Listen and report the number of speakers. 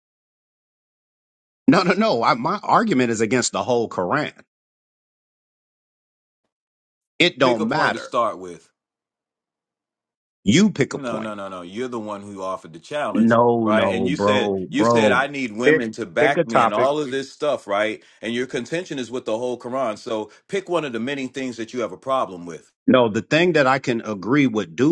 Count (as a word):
two